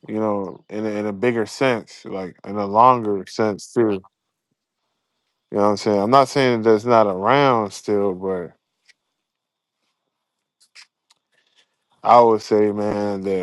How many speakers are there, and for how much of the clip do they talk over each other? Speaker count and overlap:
1, no overlap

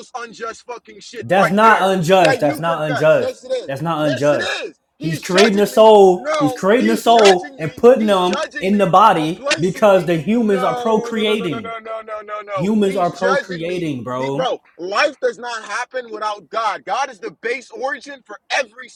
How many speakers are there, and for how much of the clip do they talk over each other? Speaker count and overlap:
2, about 55%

